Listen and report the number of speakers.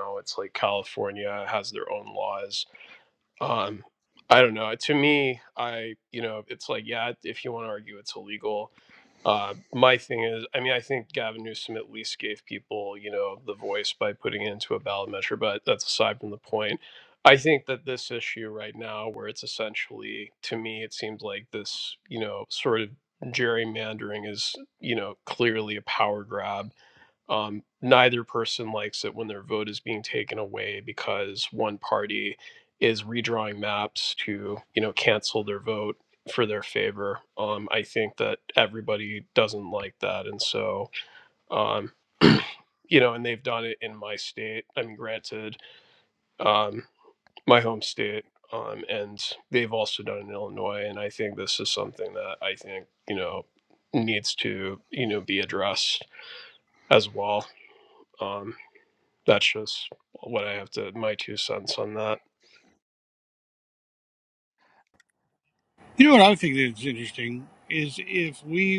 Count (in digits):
2